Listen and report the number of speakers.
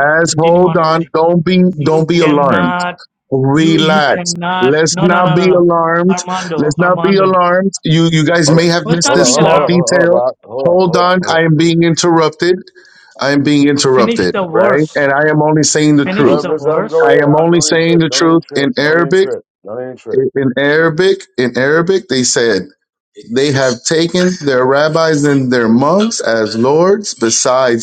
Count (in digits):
3